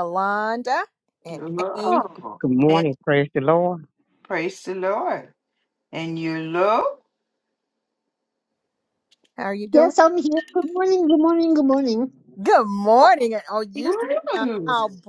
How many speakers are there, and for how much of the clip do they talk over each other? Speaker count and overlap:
4, about 8%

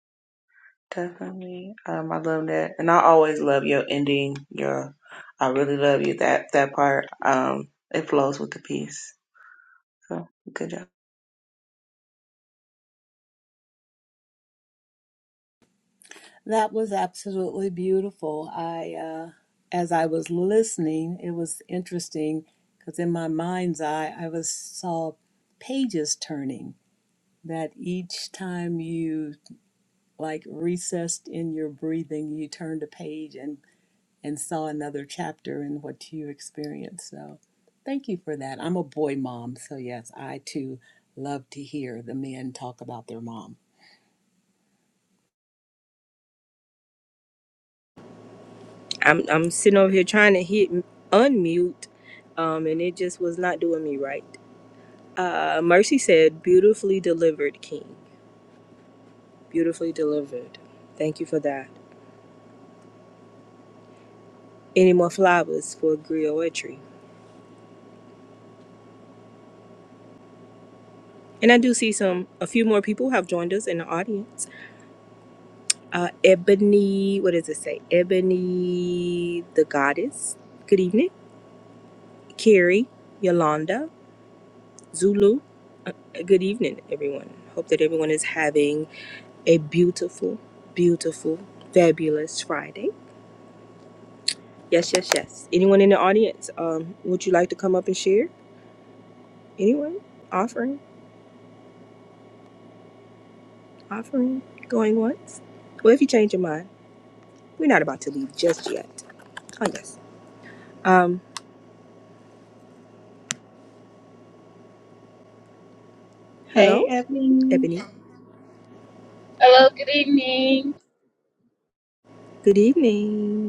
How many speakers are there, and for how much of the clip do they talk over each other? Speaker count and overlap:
4, under 1%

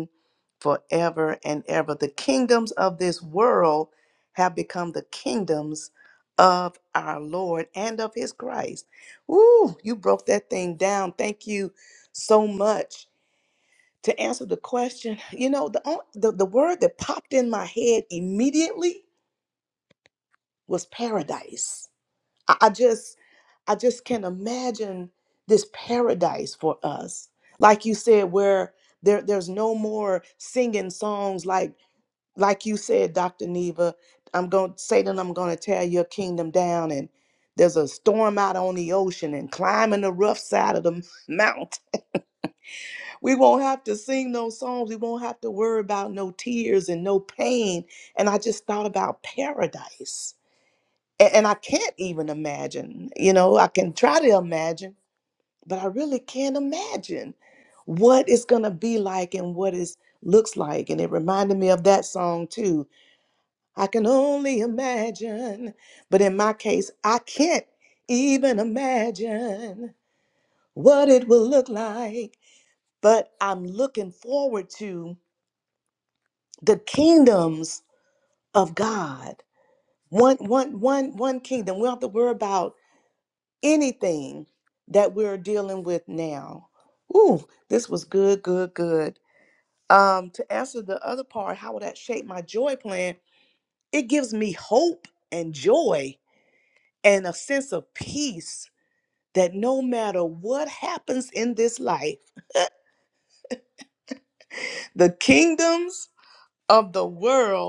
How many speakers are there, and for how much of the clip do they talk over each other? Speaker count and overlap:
1, no overlap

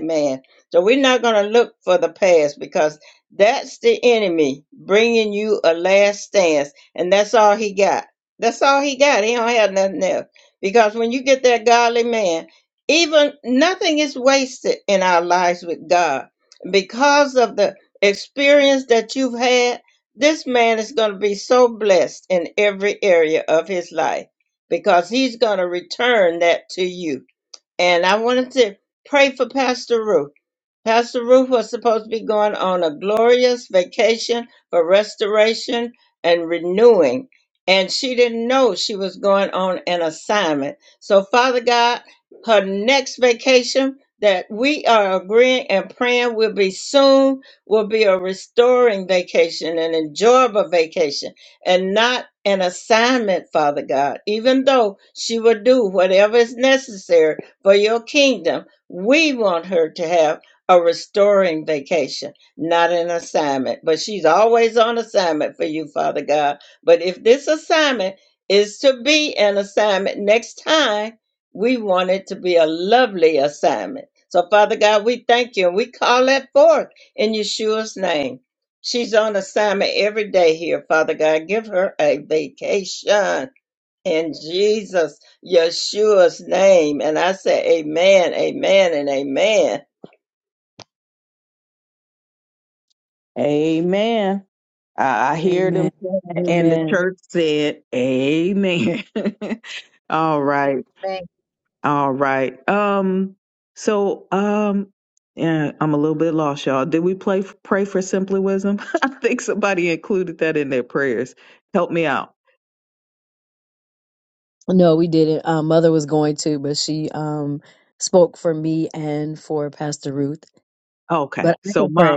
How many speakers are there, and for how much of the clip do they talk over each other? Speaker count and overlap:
3, about 2%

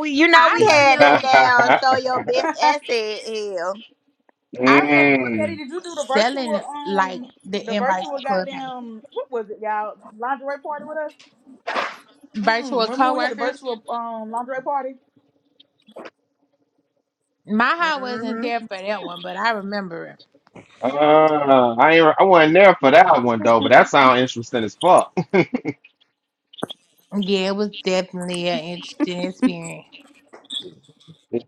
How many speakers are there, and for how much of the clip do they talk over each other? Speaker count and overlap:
4, about 17%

